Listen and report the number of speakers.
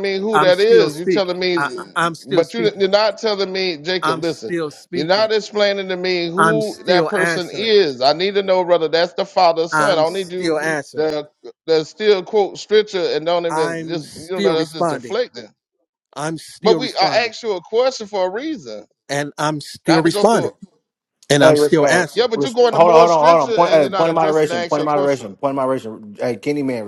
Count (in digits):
3